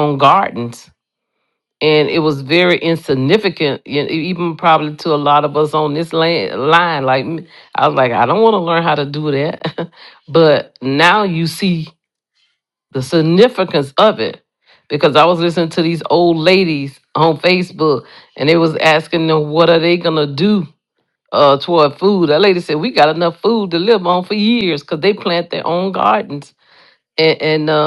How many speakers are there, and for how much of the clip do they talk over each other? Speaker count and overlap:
1, no overlap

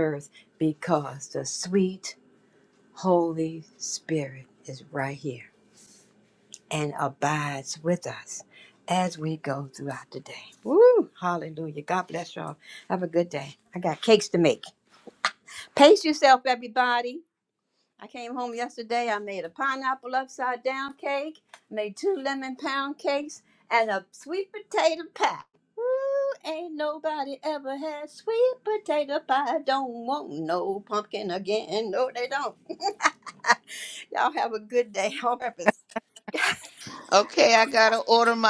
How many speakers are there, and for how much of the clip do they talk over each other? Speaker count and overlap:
2, no overlap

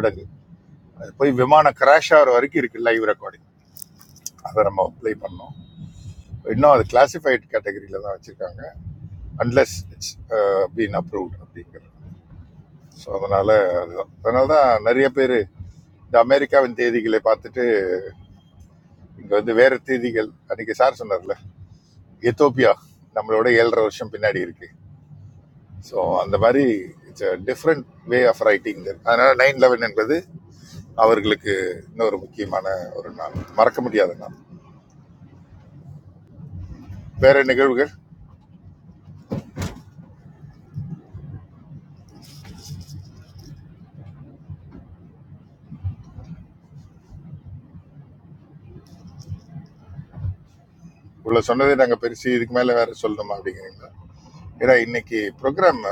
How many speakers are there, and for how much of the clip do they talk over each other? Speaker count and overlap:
1, no overlap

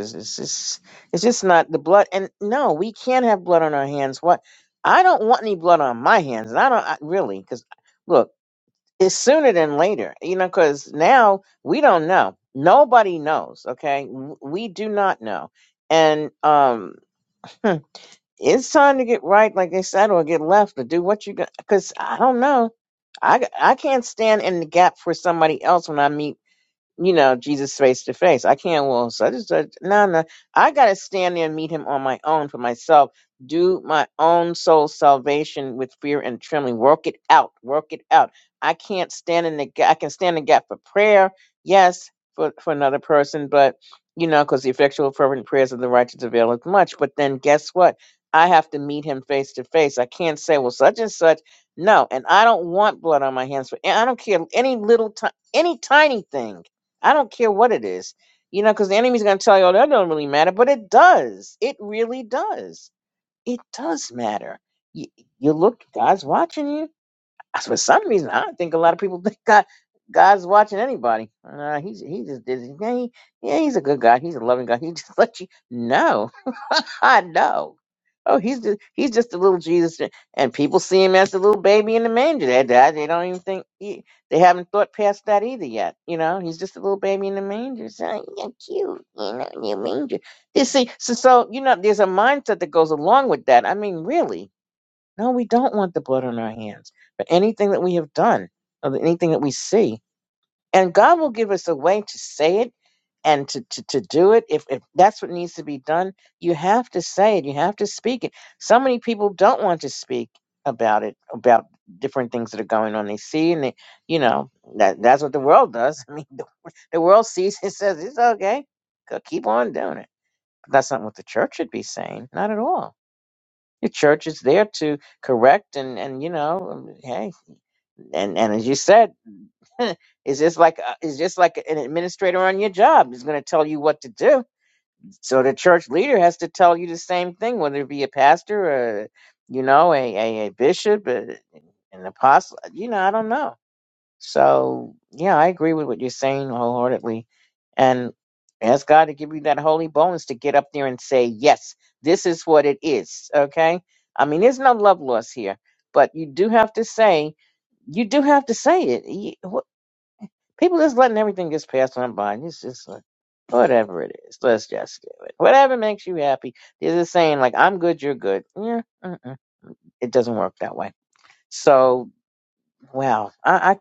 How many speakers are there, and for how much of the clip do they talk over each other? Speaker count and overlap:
1, no overlap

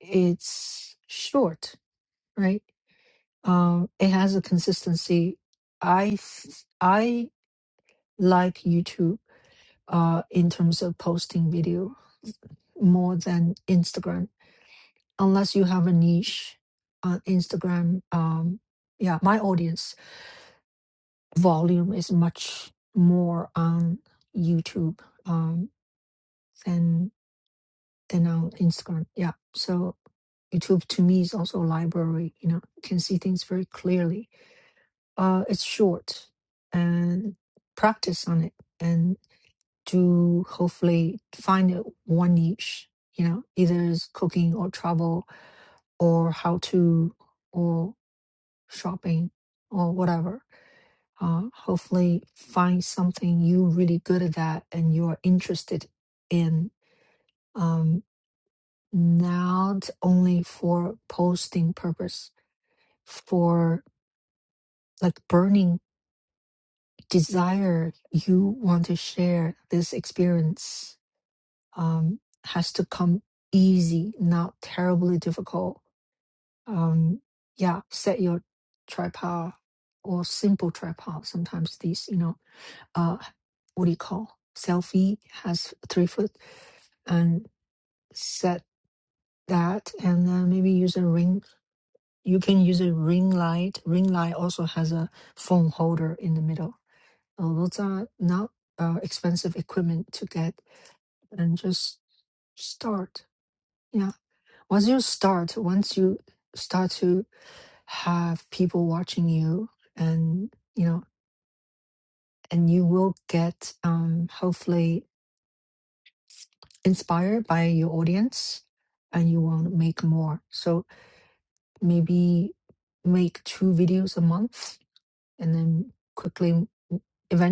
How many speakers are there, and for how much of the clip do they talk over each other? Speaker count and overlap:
1, no overlap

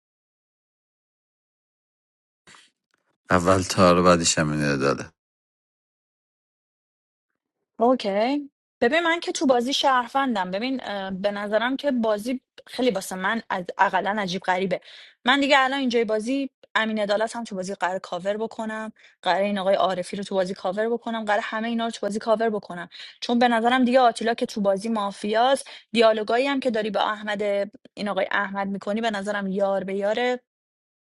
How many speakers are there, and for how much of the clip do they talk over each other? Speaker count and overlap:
2, no overlap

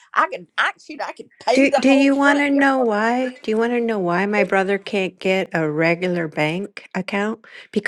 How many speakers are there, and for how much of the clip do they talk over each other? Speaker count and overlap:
2, about 14%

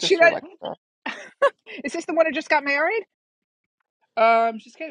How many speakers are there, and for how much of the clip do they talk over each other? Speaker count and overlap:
2, about 8%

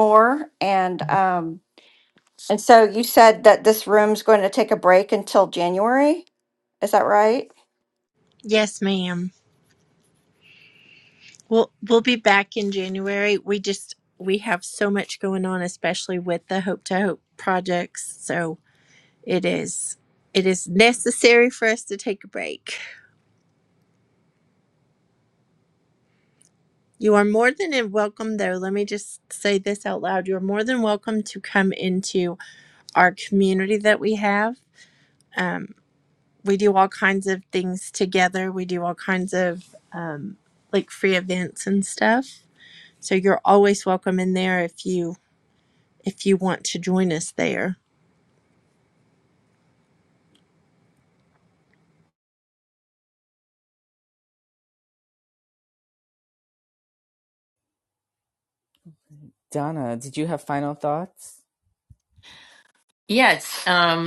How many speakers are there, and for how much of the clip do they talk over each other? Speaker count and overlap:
4, no overlap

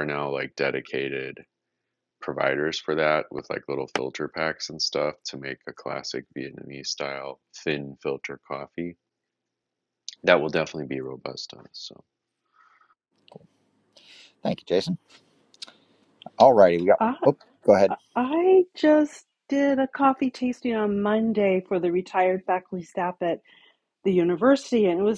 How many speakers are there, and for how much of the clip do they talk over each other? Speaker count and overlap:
3, about 1%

